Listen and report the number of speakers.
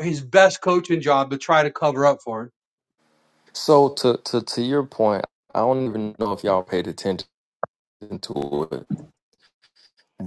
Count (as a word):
two